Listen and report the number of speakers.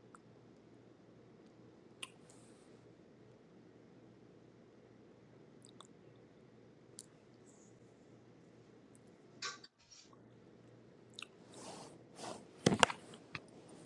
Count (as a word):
zero